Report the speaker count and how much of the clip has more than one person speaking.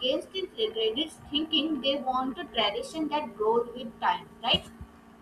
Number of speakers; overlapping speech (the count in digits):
1, no overlap